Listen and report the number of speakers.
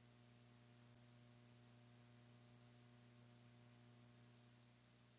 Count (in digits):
0